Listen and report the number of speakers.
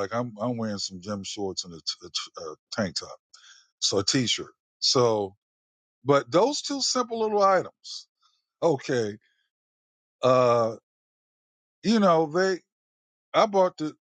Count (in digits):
1